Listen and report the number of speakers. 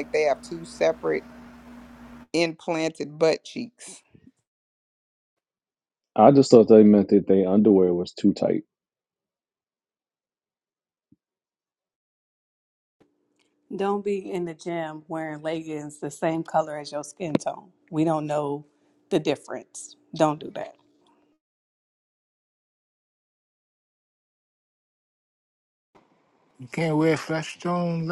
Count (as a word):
four